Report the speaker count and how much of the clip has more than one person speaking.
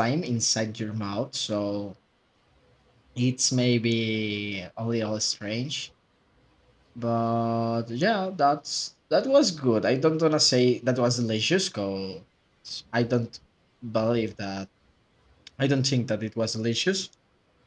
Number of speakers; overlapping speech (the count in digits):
1, no overlap